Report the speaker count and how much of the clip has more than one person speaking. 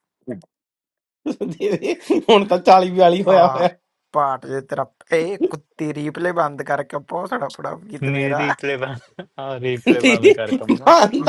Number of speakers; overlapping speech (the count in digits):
3, about 15%